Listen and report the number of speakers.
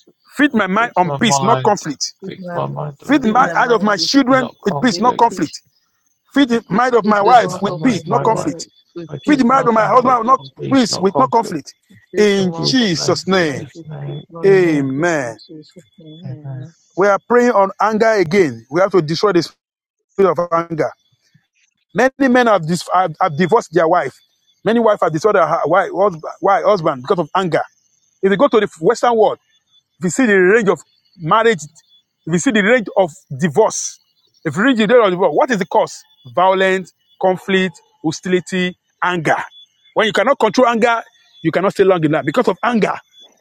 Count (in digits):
3